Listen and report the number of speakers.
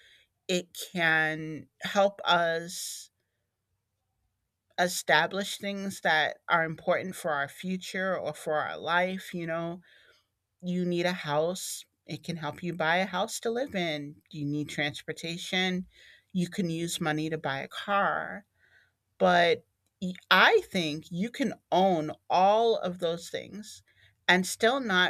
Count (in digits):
1